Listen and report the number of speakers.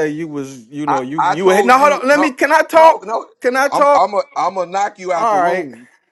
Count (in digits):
2